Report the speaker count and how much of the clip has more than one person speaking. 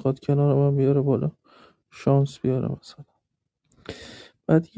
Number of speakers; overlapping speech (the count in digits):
1, no overlap